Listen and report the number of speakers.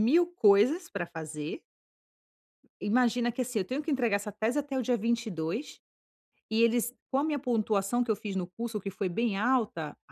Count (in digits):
1